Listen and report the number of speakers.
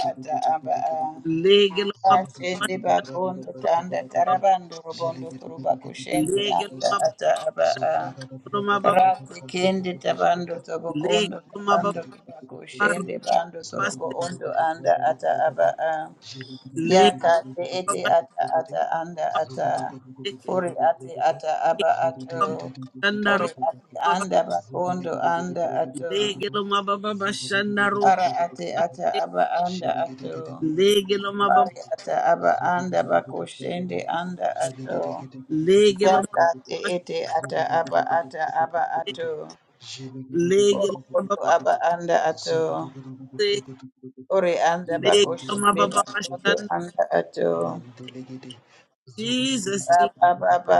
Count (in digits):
3